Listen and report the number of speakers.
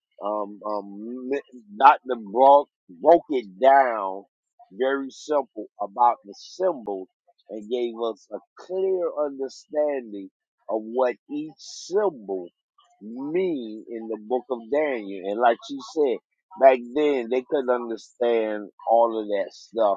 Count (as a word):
one